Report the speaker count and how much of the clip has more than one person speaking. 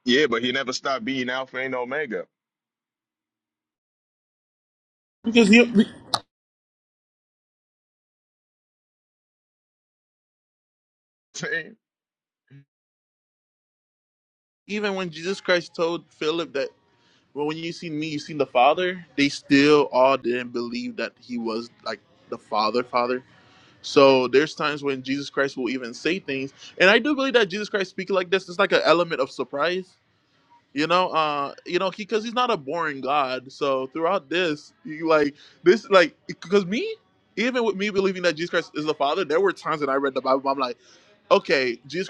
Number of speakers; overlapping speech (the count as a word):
two, no overlap